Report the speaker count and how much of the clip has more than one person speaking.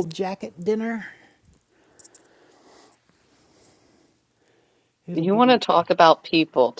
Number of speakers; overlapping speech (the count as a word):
two, about 7%